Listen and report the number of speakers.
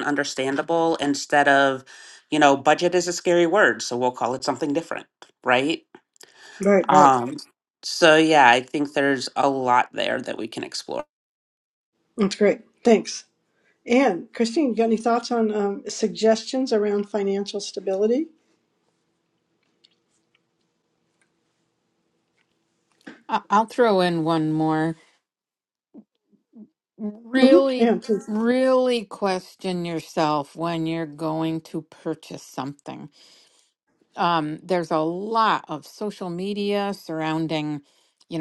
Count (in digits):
3